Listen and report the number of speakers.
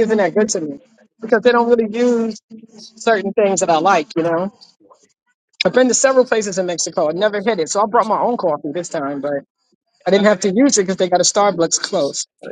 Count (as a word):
one